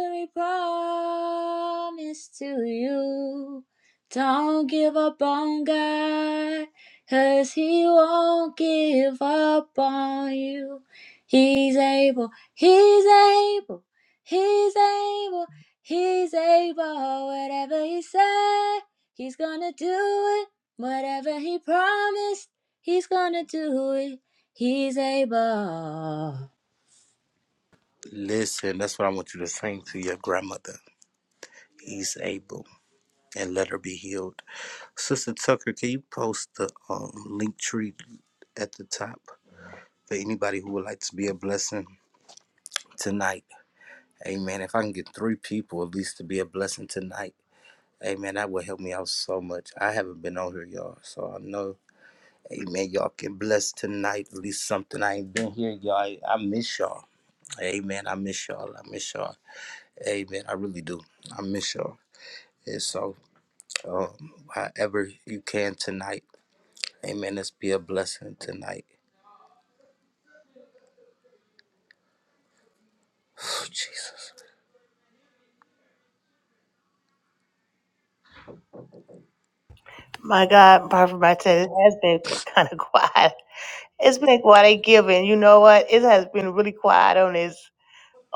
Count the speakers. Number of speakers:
3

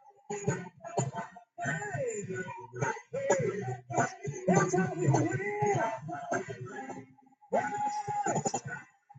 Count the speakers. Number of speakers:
0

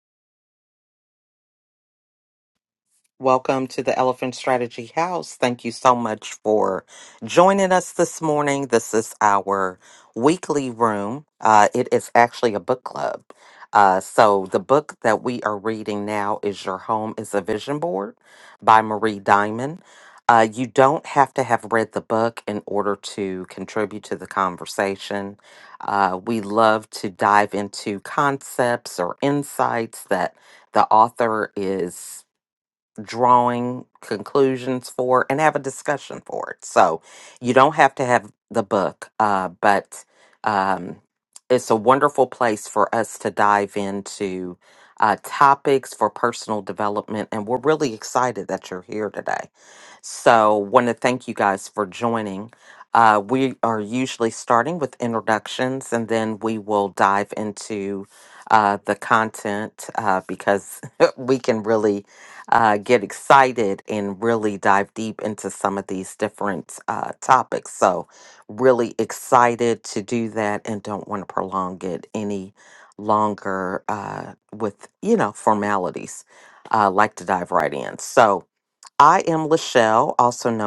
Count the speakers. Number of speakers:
1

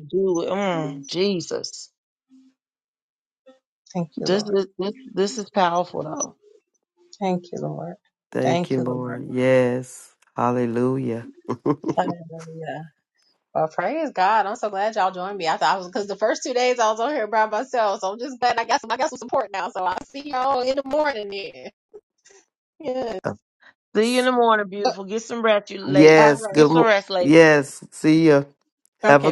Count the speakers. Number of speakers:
3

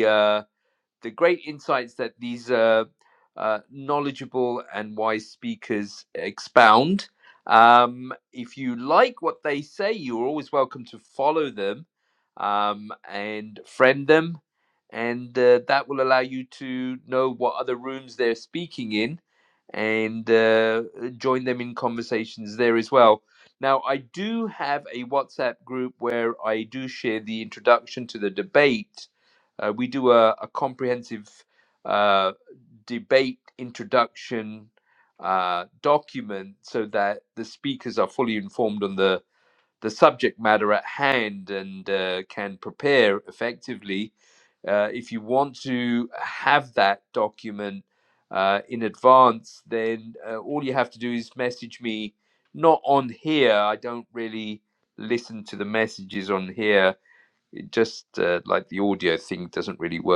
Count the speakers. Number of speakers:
1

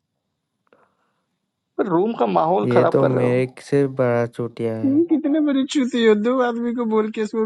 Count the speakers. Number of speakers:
3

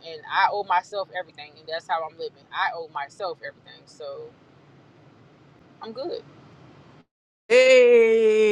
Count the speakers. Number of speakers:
2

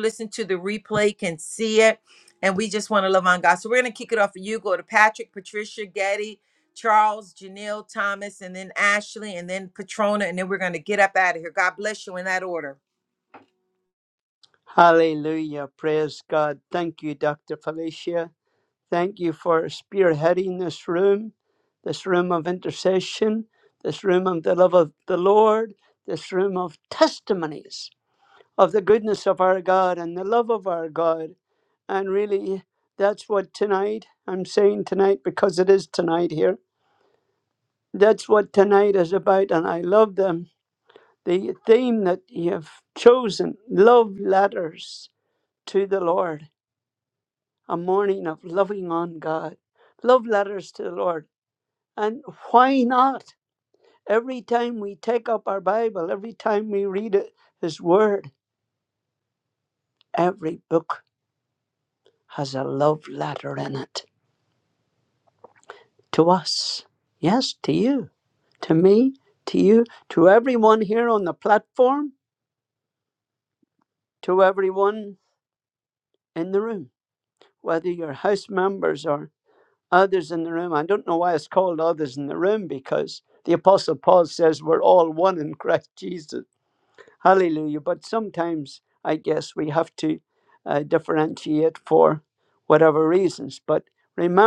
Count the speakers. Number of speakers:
2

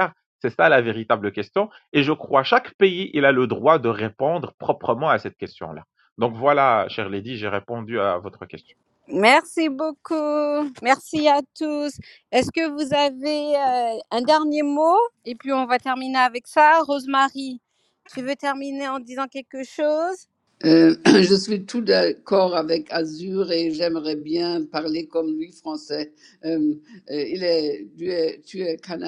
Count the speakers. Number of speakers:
3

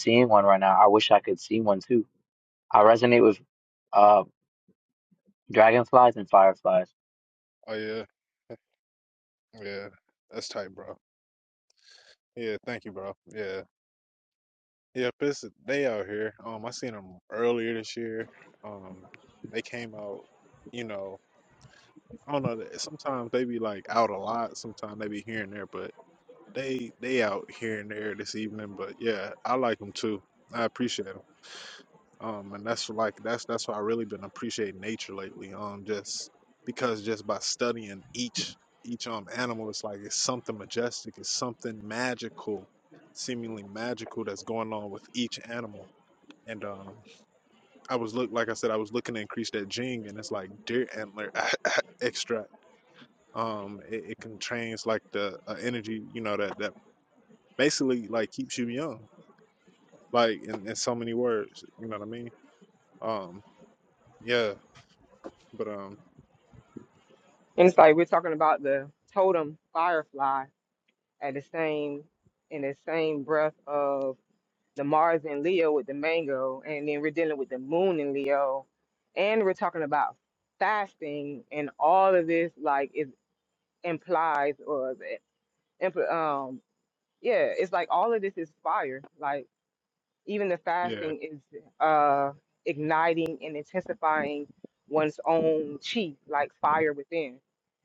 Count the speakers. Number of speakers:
3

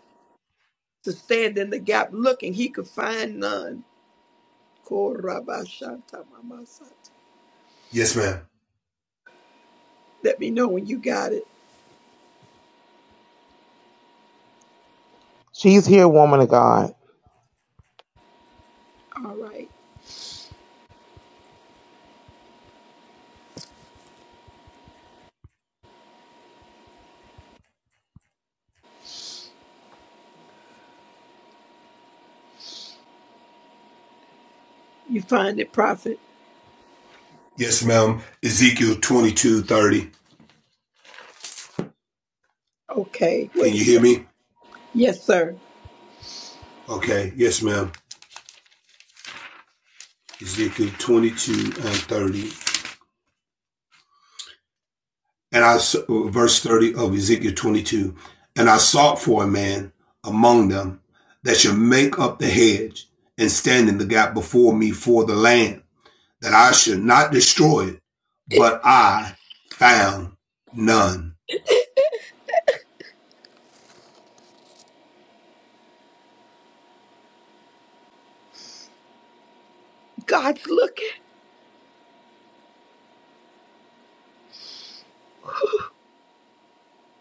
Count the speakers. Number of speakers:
3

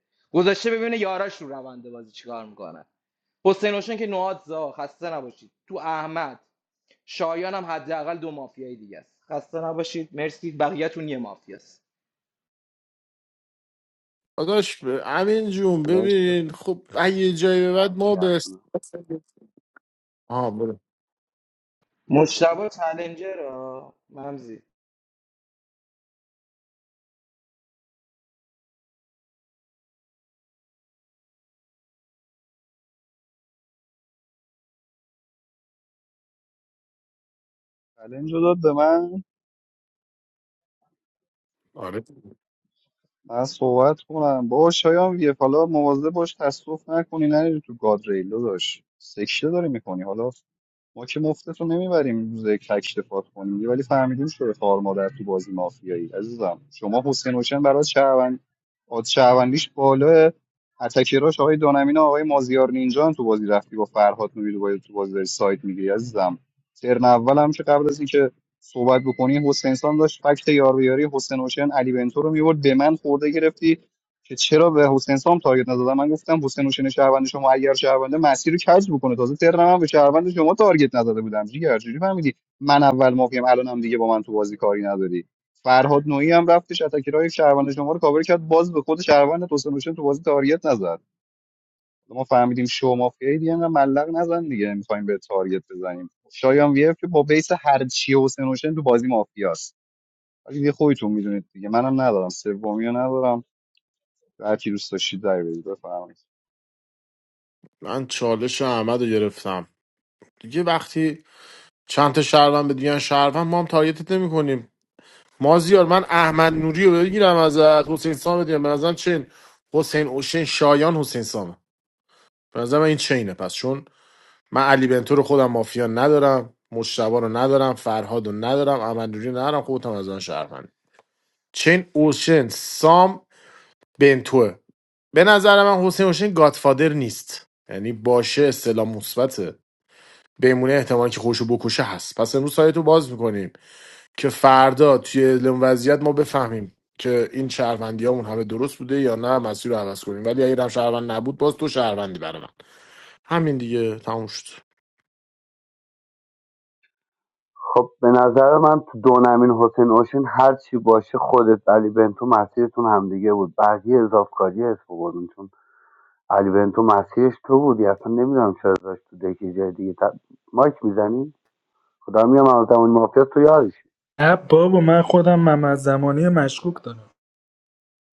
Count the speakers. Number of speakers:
5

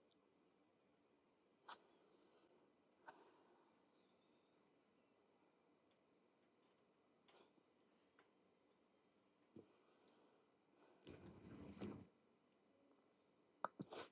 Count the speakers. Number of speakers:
0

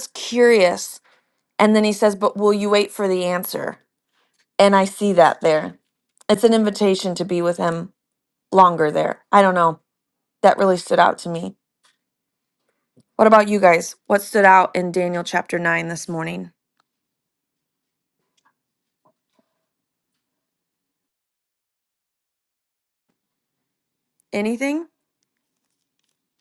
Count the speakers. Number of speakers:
1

